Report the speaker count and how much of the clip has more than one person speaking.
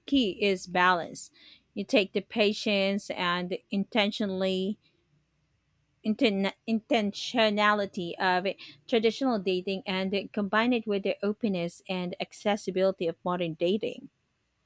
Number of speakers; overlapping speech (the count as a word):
one, no overlap